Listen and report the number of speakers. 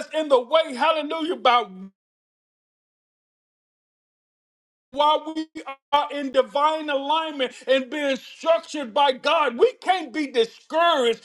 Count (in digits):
1